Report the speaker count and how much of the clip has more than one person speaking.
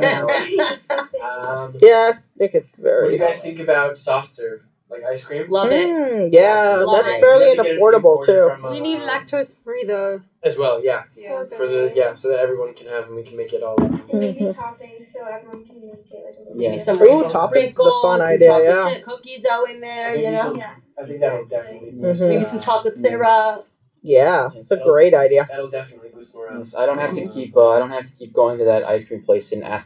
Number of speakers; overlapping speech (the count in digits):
6, about 45%